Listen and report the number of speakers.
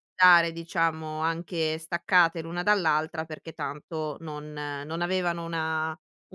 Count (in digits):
1